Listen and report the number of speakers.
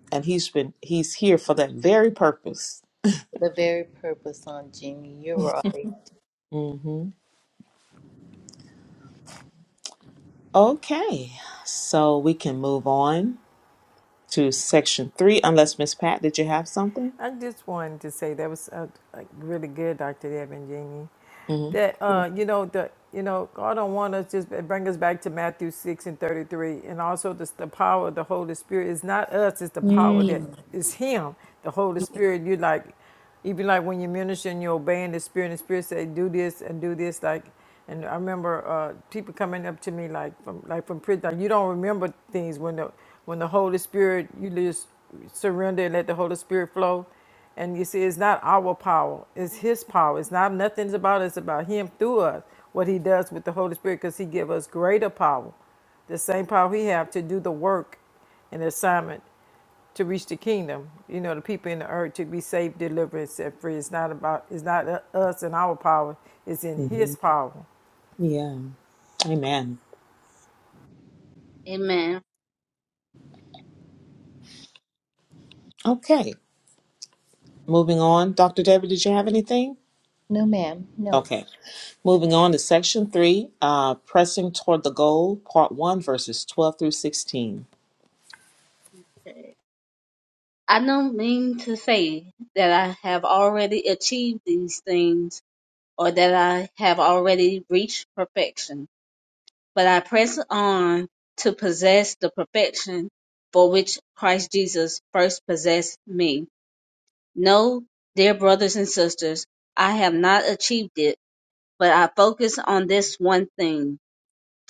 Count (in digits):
4